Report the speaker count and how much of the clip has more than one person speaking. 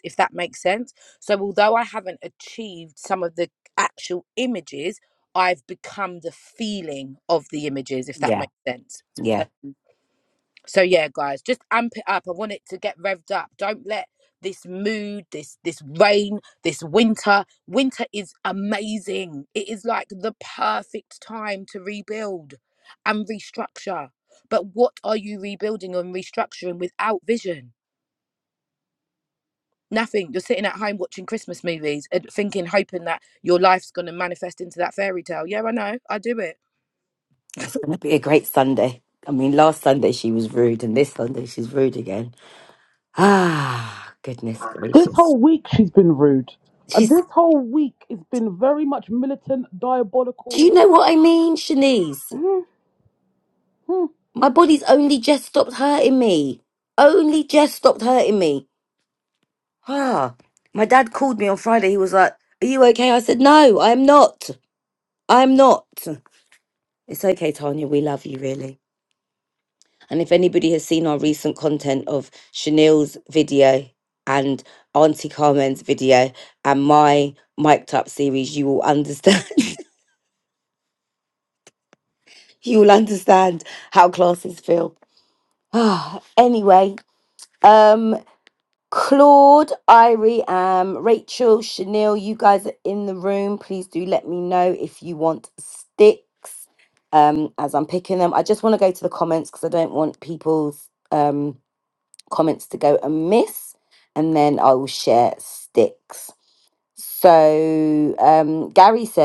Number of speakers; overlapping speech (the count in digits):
3, about 1%